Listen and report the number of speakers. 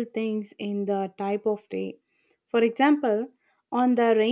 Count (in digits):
1